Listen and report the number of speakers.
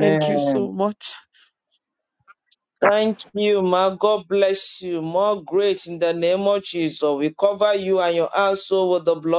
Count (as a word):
two